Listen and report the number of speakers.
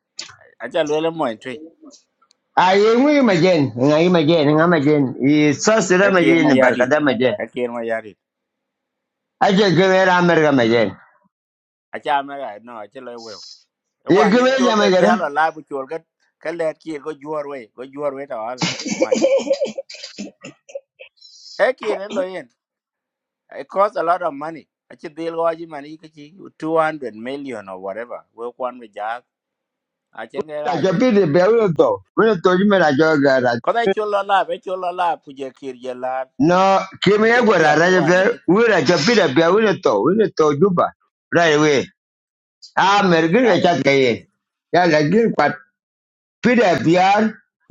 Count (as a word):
two